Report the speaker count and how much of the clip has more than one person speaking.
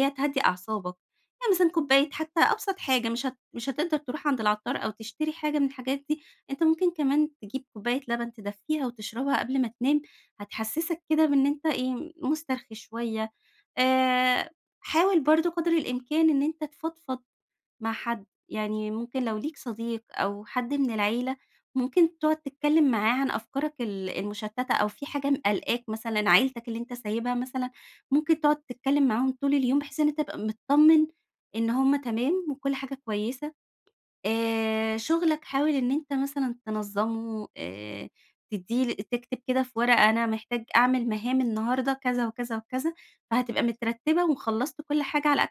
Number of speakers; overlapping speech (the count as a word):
one, no overlap